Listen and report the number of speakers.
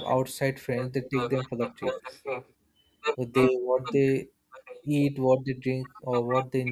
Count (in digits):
1